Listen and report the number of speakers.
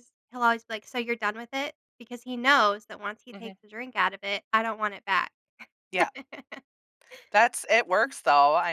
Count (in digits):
2